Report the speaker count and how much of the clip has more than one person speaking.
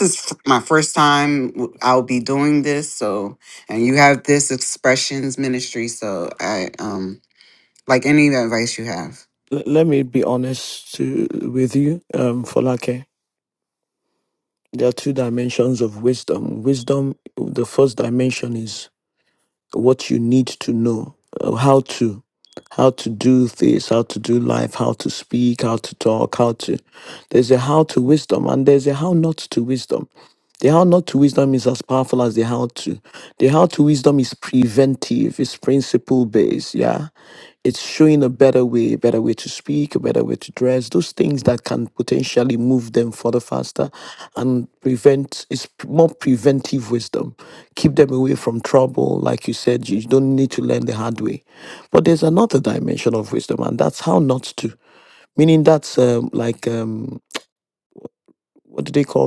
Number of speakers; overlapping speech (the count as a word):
two, no overlap